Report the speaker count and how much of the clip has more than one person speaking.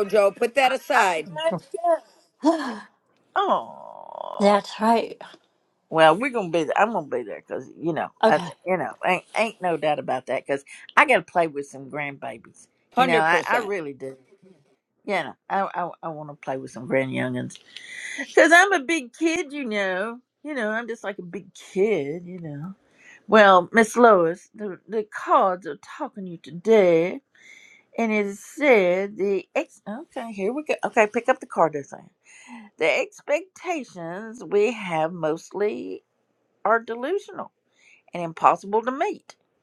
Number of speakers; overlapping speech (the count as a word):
three, about 3%